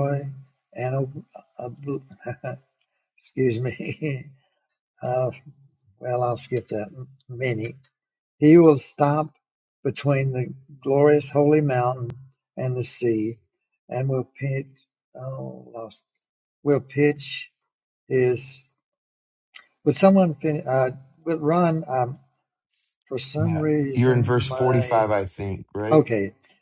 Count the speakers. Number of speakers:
2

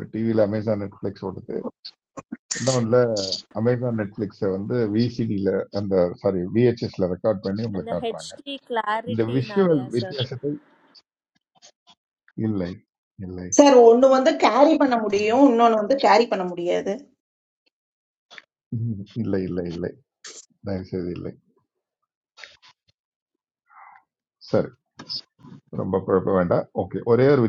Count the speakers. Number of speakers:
3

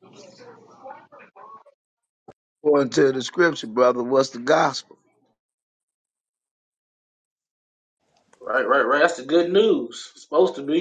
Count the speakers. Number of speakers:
2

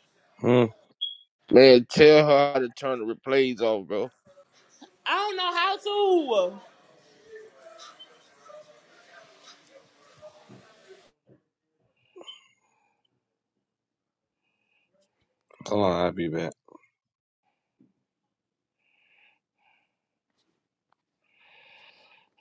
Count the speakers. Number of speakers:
3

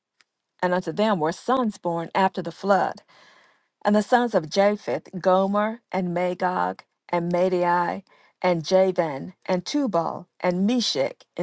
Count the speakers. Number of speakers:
1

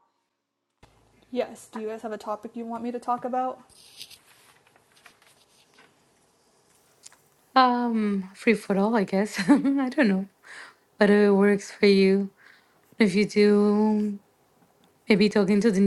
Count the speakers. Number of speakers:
2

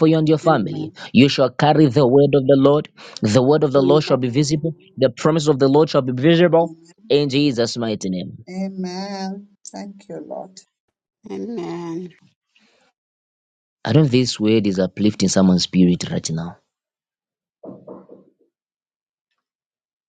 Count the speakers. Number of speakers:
3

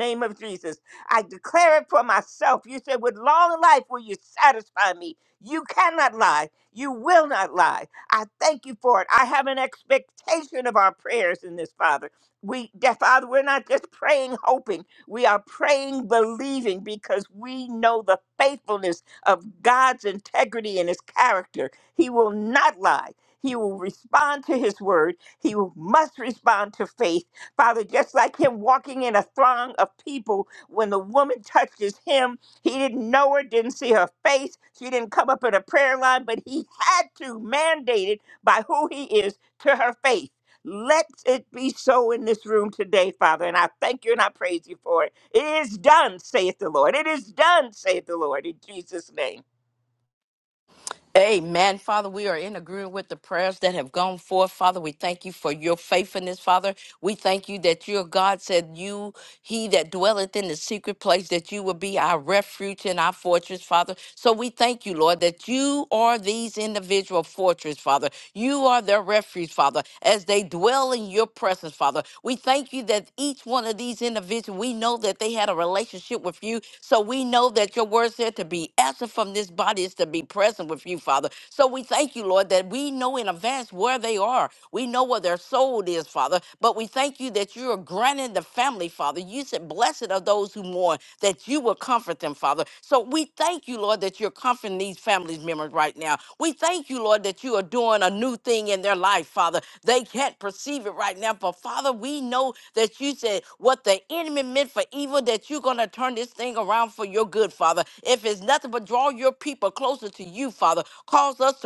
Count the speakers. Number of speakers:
2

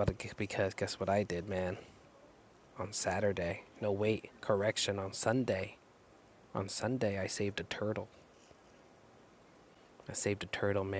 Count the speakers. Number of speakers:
1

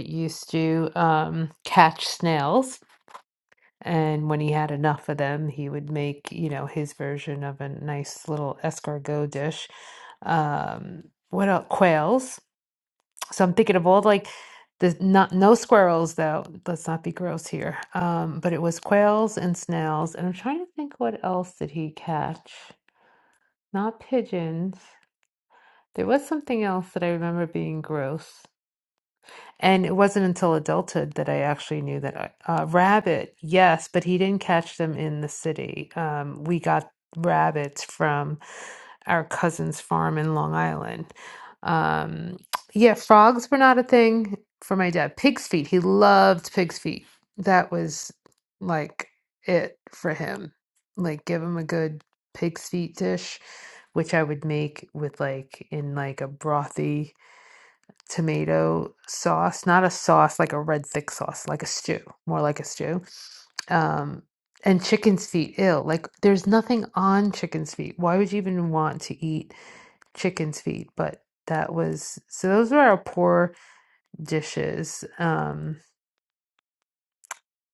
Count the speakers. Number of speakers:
1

